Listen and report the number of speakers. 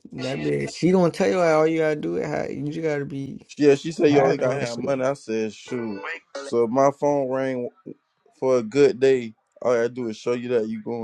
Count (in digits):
2